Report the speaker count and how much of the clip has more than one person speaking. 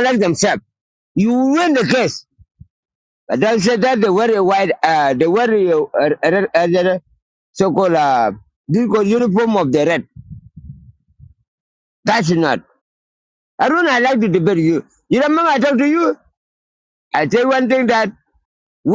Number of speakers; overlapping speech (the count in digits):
1, no overlap